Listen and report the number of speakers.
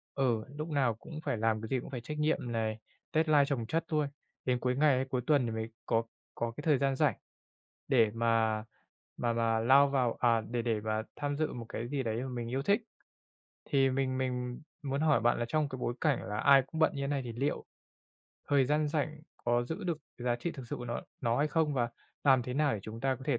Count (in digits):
1